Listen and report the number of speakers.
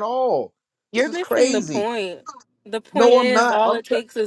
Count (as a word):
two